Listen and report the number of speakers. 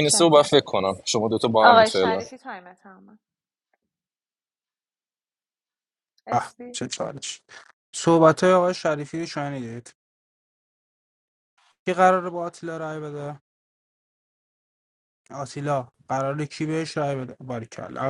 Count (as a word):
three